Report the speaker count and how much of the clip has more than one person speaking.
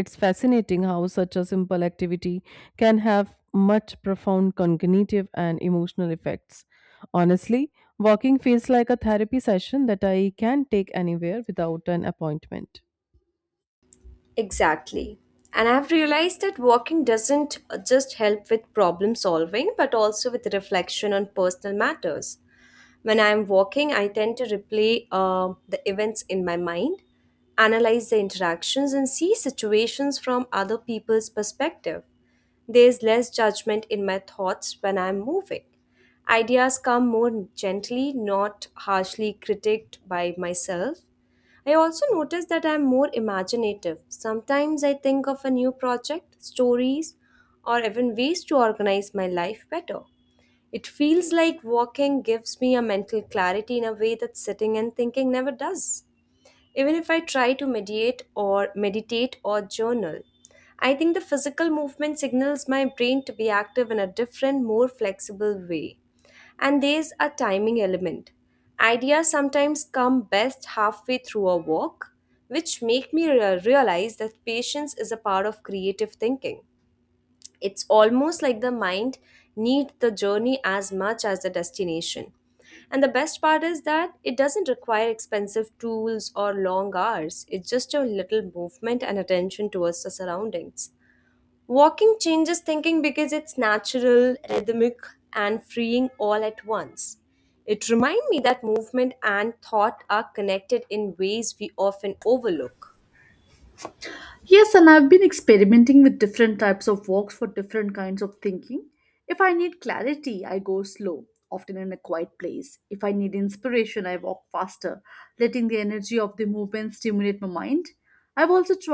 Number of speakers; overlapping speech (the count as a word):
three, no overlap